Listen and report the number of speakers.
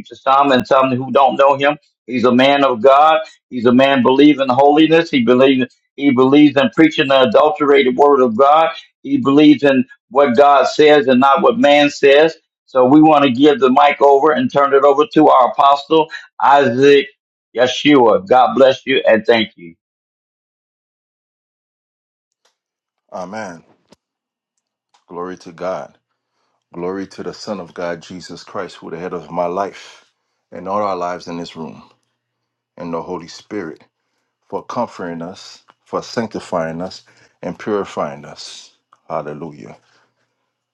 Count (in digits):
2